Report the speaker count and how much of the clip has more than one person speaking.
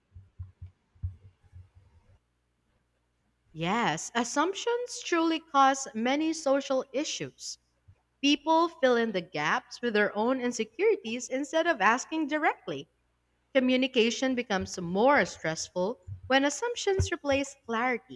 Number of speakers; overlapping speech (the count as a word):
one, no overlap